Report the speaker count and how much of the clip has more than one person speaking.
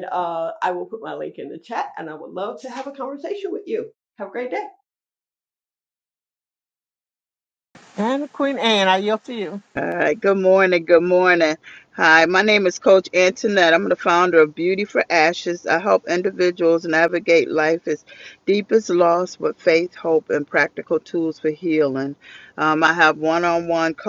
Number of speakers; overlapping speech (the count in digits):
3, no overlap